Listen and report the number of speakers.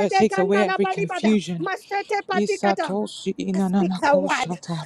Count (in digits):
2